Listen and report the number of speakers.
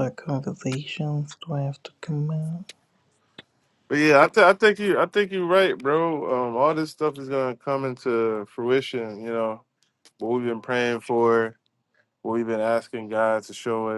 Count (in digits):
2